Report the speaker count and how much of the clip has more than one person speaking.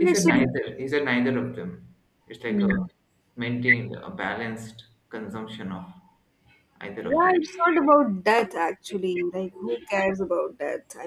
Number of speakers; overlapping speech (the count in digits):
2, about 10%